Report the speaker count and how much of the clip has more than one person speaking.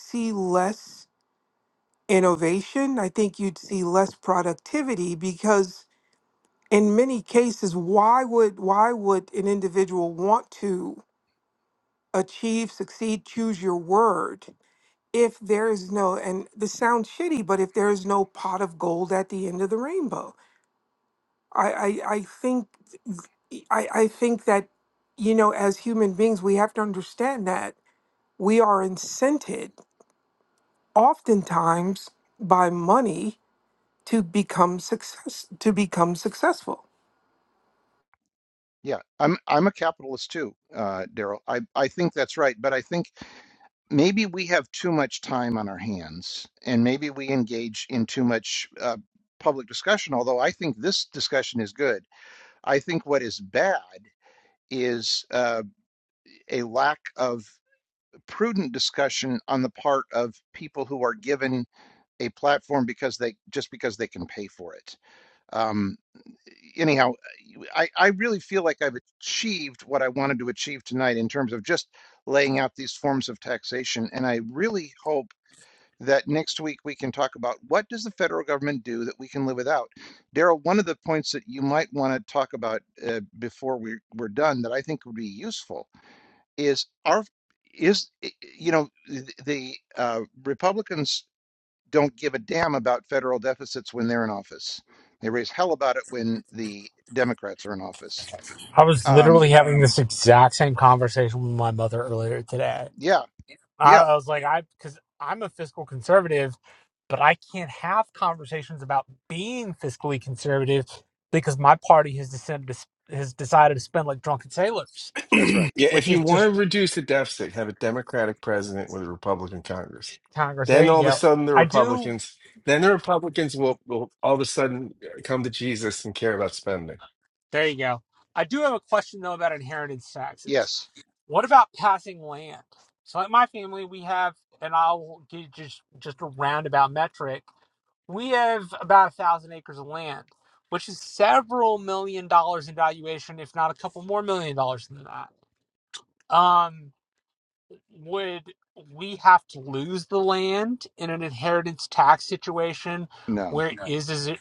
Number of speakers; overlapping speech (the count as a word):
four, about 2%